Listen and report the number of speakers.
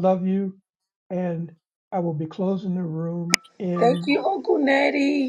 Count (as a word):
two